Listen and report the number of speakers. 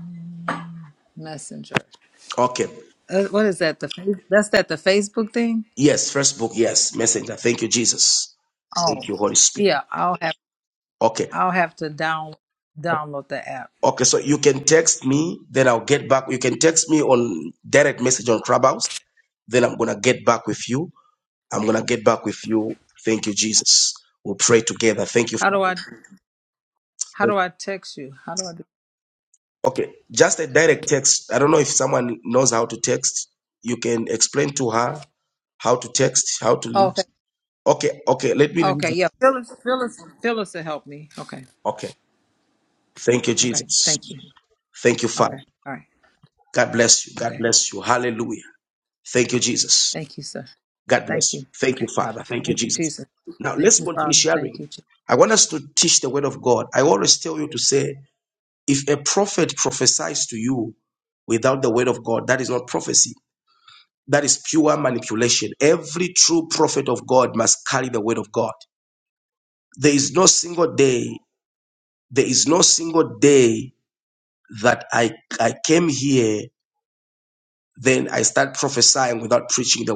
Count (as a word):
two